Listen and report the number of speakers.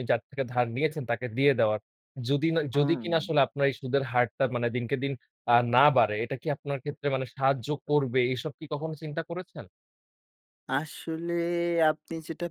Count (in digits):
2